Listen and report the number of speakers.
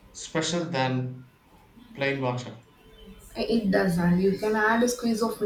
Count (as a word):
two